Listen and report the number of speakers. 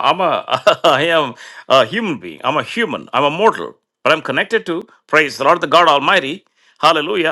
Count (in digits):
1